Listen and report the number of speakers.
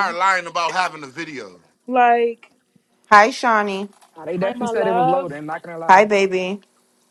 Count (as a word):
four